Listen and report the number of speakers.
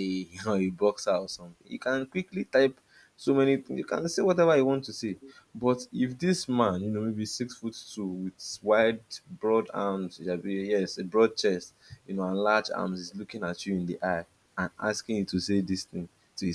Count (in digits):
1